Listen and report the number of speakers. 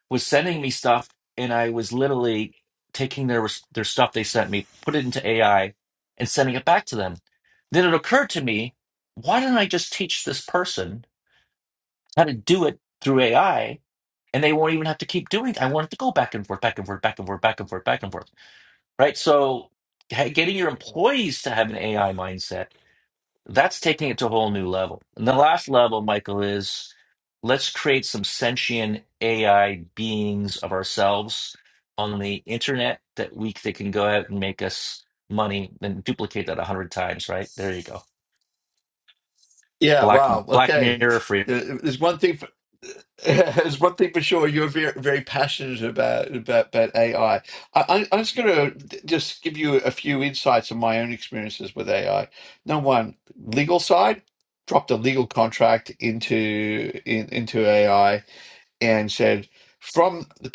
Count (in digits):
2